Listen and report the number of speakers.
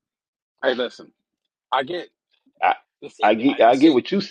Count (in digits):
2